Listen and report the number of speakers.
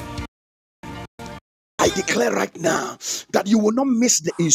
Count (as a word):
one